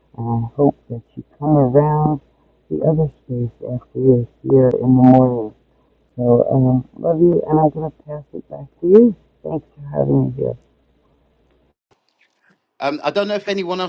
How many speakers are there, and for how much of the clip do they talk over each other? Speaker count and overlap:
two, no overlap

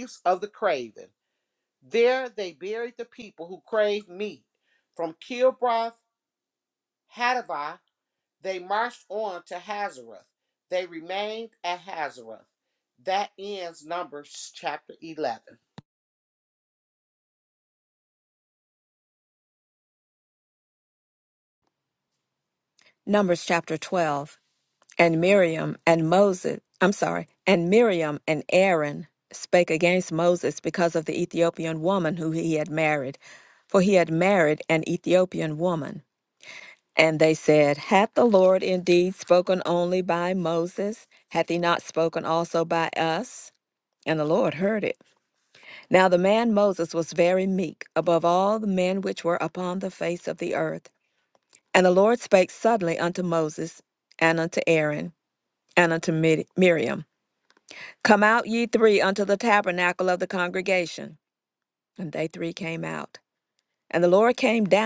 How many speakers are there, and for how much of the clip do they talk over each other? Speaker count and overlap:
two, no overlap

